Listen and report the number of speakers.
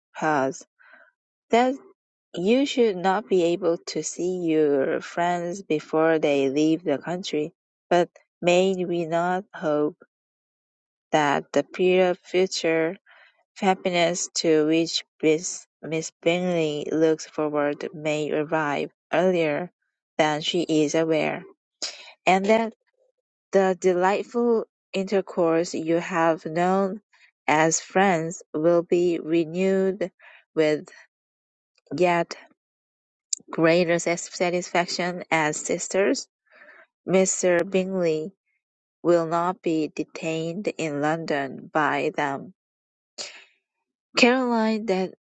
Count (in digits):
1